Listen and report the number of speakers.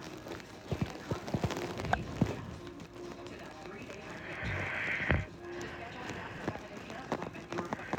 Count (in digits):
0